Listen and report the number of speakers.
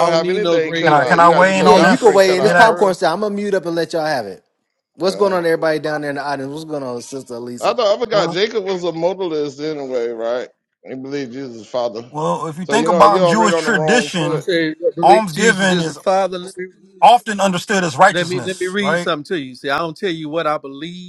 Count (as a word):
four